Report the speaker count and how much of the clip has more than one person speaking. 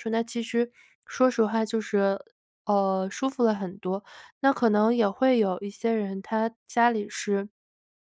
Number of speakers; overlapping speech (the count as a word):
one, no overlap